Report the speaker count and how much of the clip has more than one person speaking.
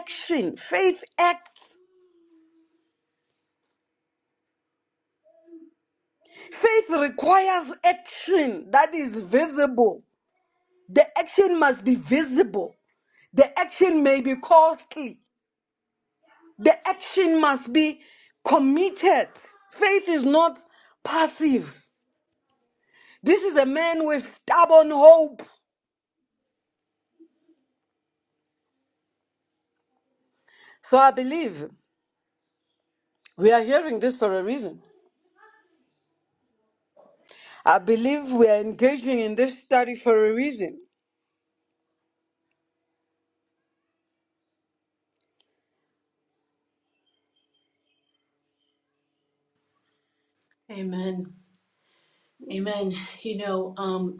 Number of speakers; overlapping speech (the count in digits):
2, no overlap